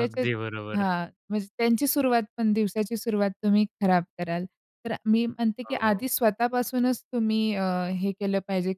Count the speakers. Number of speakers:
2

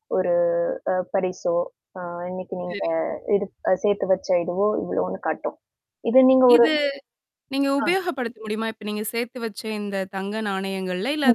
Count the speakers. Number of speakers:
2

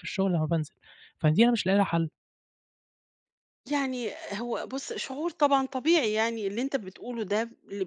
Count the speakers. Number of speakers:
2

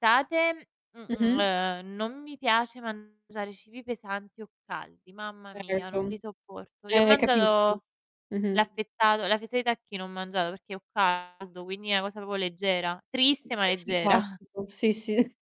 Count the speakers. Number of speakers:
2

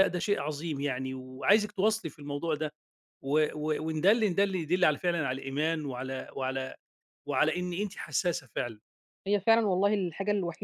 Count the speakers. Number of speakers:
2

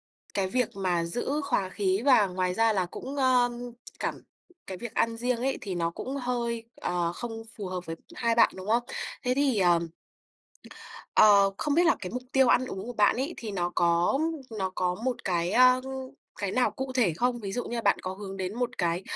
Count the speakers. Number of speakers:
1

